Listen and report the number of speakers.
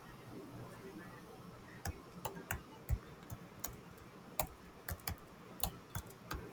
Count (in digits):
0